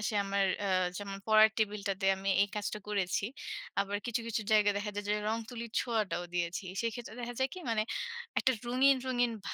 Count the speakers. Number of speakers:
one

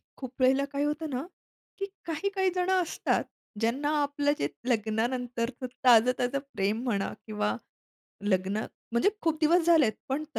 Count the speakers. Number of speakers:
one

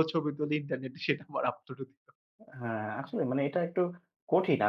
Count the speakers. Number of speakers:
two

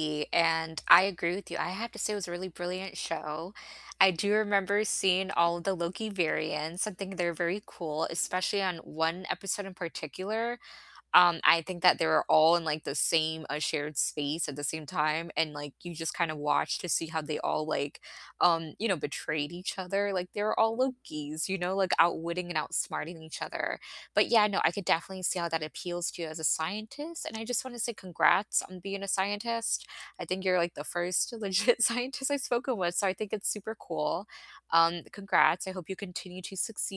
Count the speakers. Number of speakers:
one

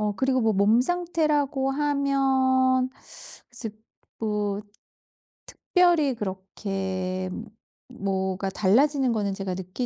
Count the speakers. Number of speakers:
one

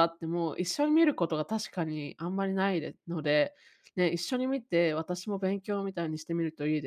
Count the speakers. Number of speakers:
one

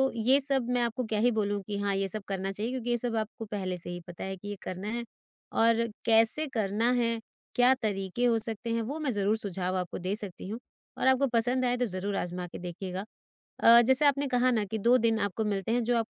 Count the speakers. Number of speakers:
one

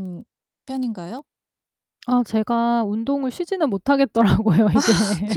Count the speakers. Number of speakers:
two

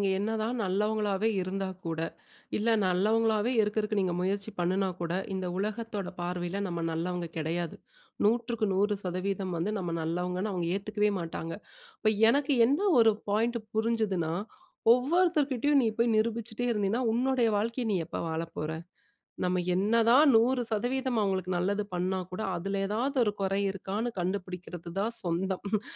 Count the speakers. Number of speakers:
one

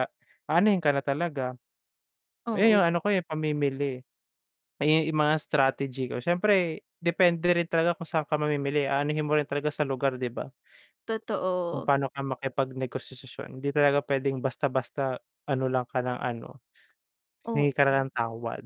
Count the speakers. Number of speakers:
two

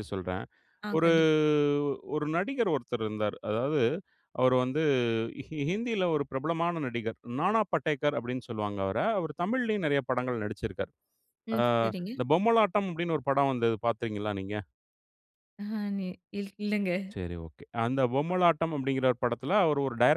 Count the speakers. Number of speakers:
two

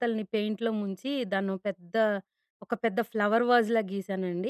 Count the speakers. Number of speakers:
one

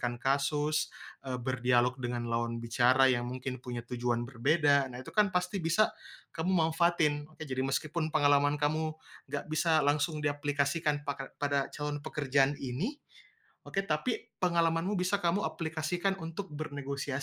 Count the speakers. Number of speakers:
one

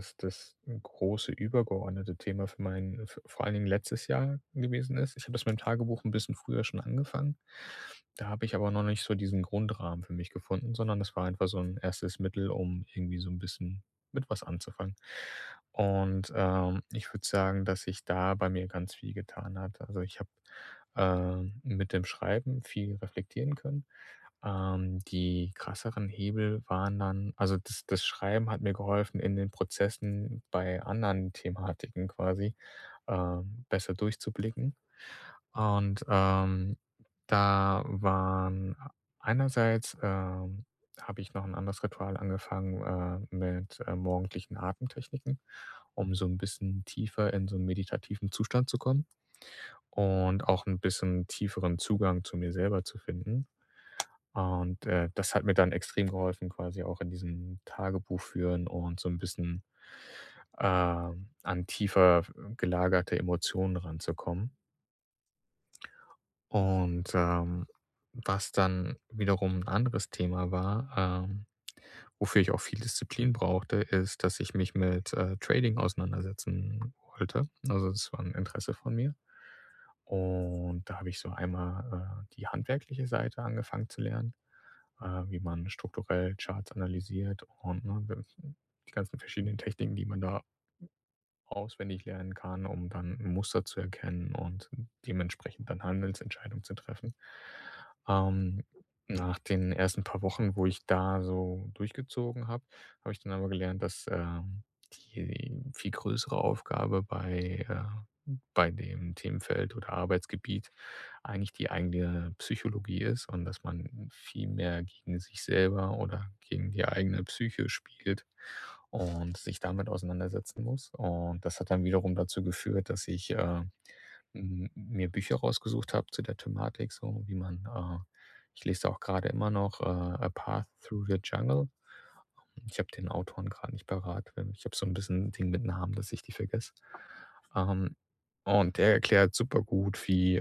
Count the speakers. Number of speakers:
one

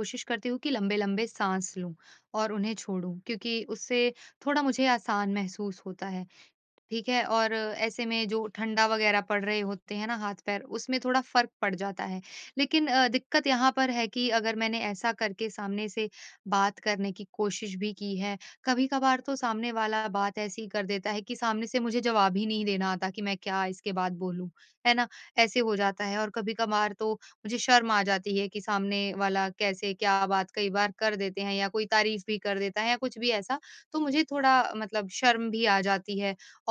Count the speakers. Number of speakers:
one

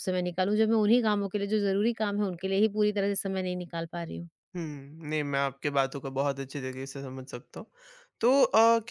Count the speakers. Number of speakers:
two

